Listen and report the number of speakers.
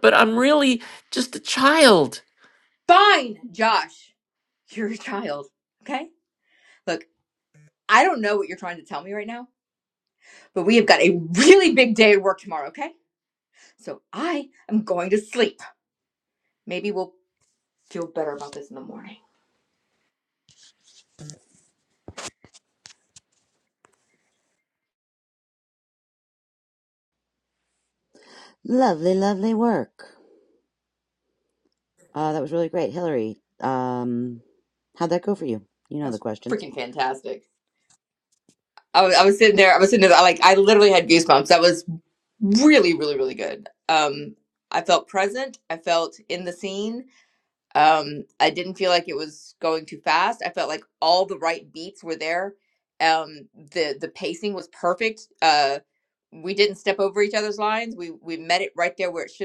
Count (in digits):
3